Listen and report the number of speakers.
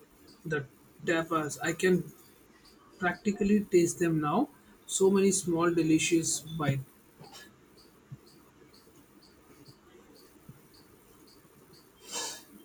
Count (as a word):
one